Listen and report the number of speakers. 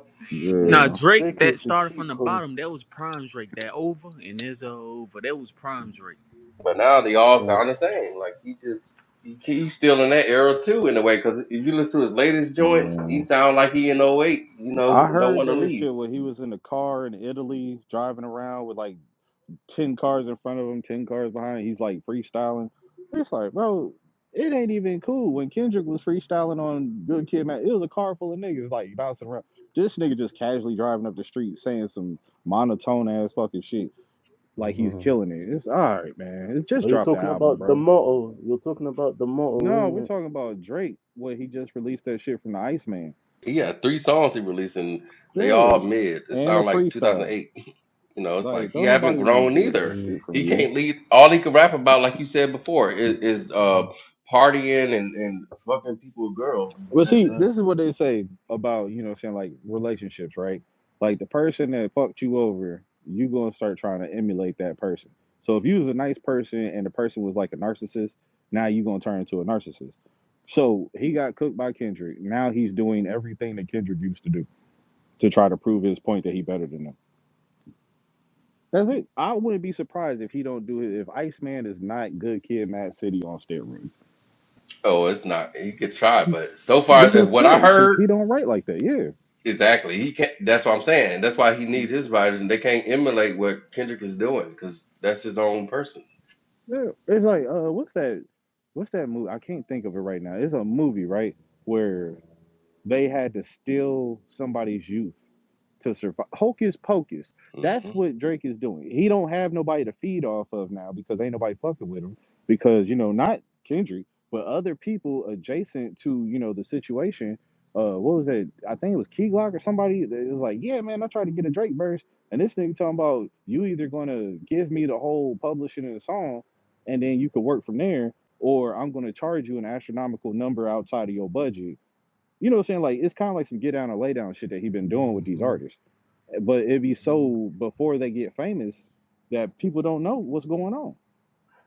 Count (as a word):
four